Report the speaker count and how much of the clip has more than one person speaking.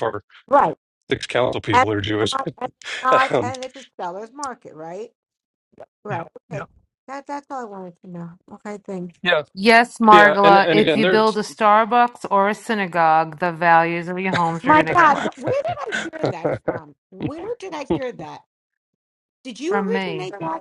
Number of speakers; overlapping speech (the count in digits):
3, about 17%